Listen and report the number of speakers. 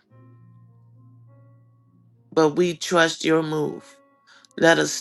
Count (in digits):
1